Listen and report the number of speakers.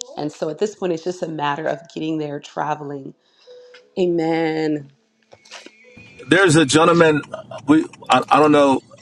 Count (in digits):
2